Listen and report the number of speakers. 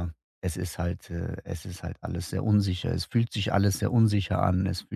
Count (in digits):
1